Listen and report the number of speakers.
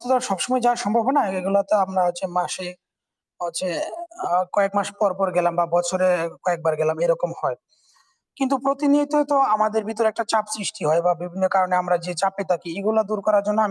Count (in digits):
1